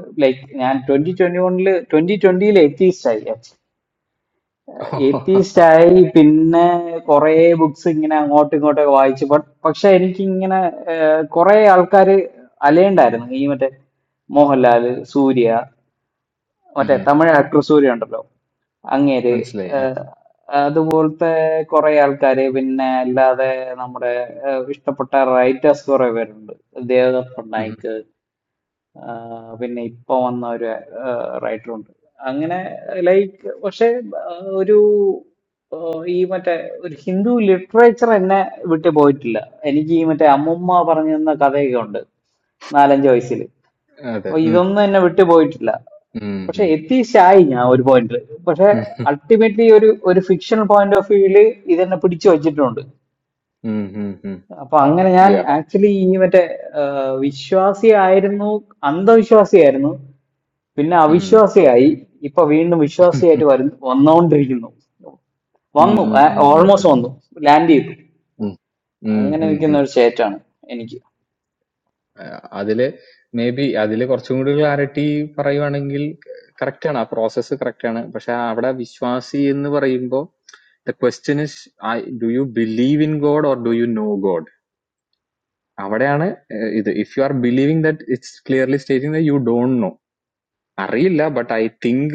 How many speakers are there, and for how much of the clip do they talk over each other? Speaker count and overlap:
two, about 4%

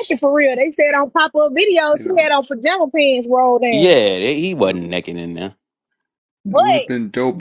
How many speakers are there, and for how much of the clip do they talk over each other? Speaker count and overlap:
three, about 12%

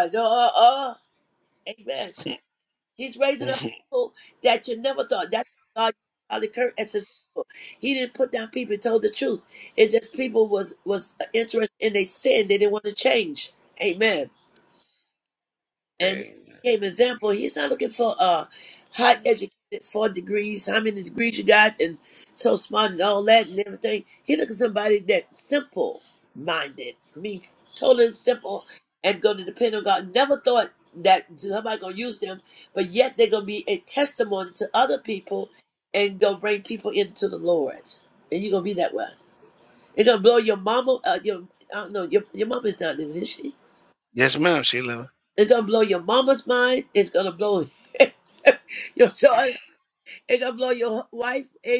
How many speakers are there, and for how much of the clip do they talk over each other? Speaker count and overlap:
two, under 1%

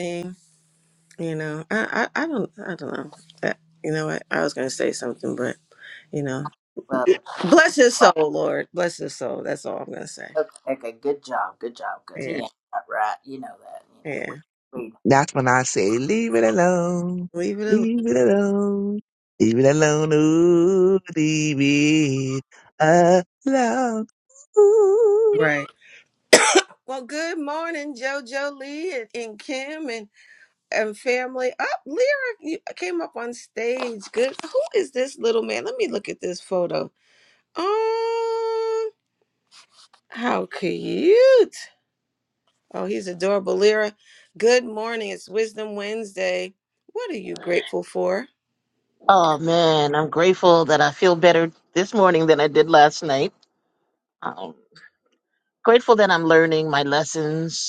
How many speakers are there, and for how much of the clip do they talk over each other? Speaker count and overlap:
four, about 2%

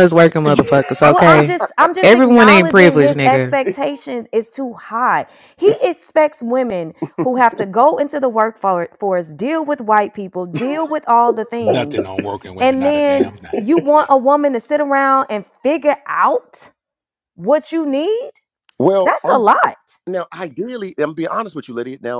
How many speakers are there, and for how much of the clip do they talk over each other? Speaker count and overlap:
four, about 15%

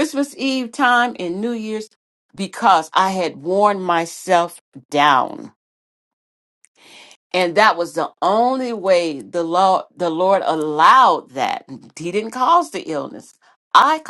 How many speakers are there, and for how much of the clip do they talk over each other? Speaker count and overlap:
one, no overlap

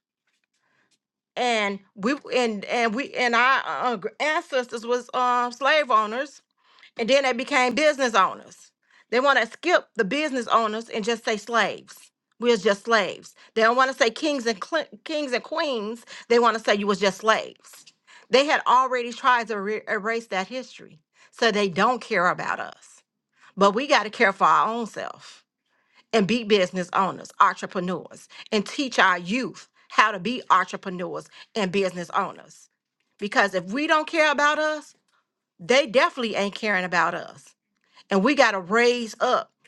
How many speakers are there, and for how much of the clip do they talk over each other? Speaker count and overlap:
one, no overlap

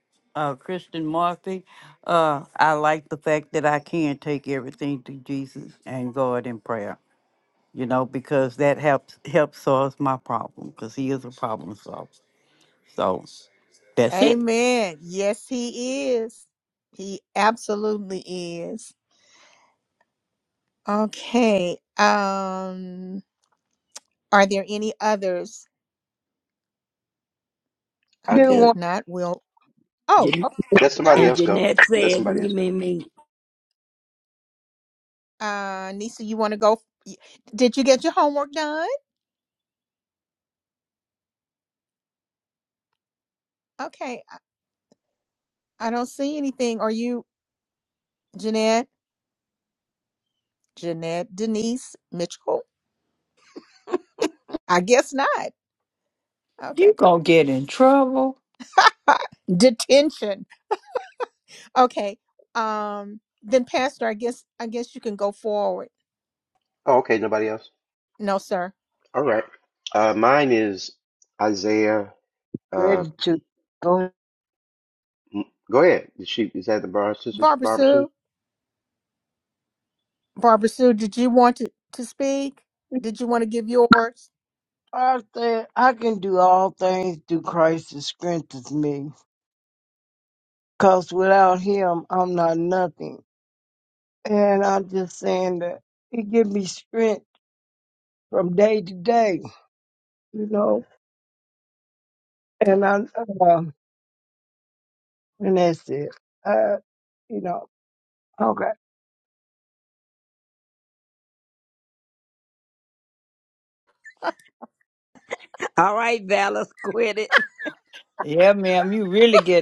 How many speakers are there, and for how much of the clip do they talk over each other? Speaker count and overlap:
six, about 3%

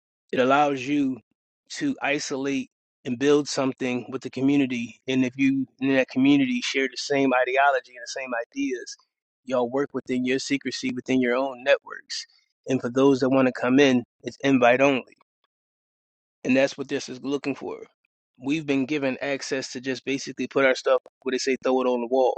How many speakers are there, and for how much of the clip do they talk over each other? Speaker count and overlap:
one, no overlap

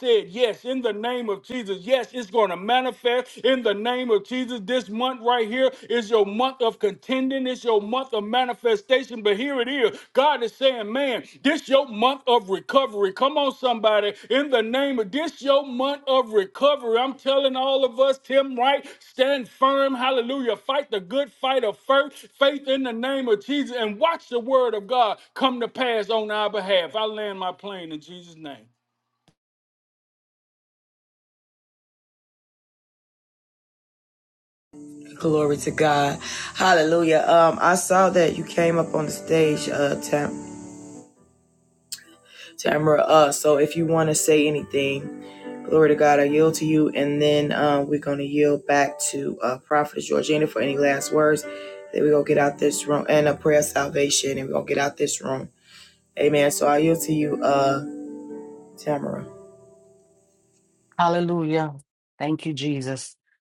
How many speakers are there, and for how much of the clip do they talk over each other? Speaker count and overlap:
three, no overlap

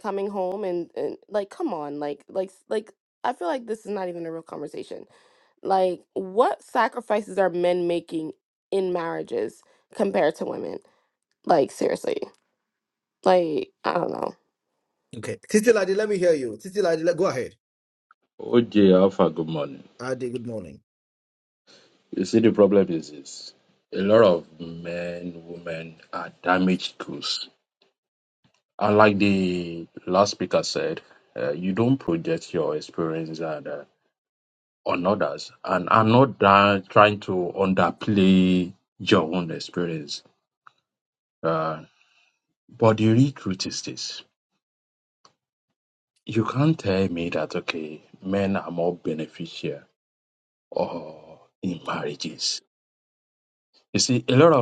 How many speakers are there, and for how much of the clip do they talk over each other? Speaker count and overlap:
three, no overlap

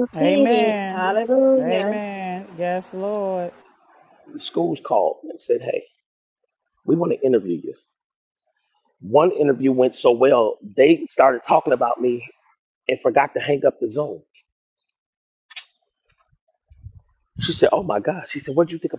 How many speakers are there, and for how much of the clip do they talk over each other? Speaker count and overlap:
three, about 7%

